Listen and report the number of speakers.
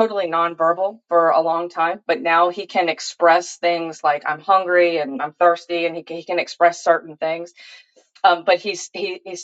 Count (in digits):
1